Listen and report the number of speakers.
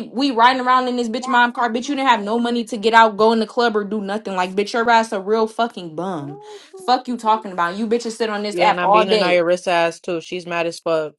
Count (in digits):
2